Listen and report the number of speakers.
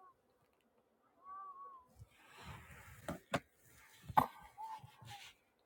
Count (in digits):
0